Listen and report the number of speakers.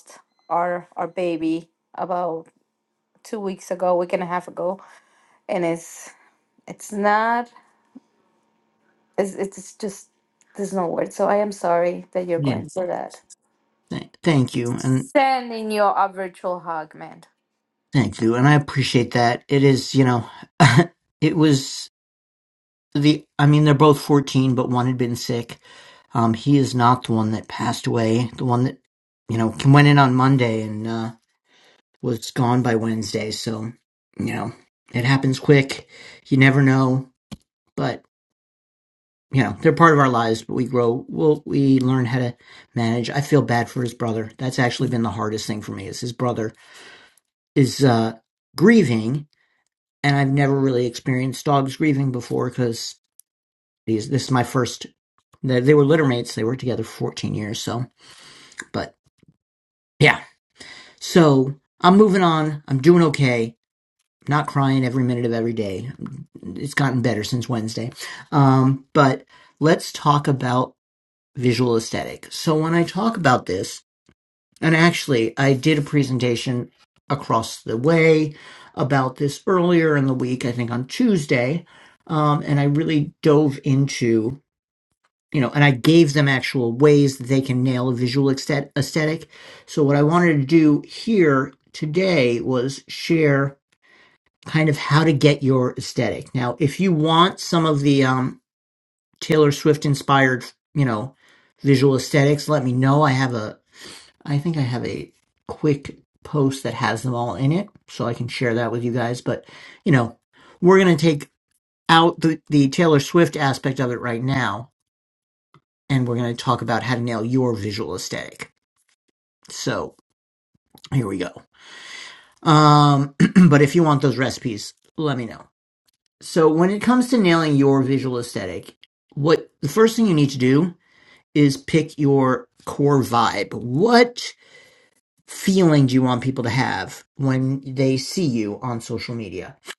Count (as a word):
two